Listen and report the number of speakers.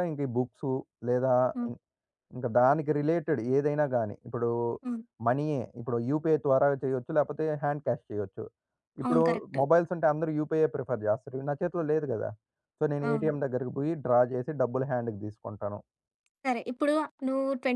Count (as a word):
two